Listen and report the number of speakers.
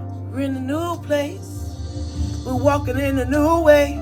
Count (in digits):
1